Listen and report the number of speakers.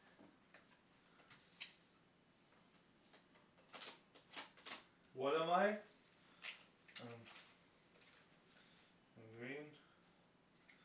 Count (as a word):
one